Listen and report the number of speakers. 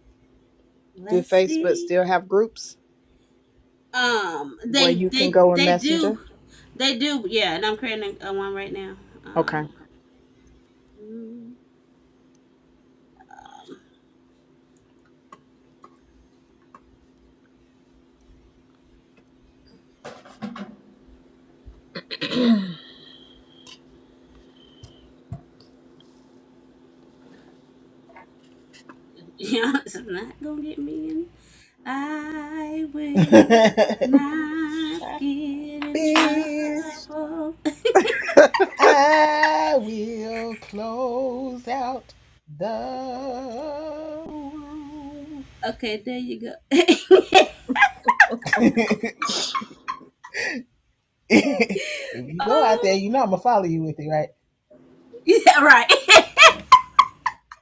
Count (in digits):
3